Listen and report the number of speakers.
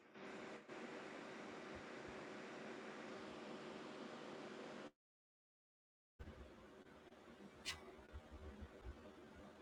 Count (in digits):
0